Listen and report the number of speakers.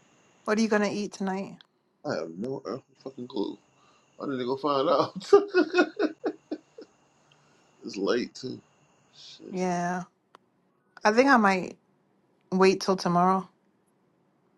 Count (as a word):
two